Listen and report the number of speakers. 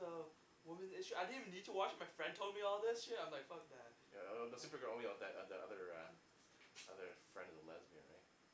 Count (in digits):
2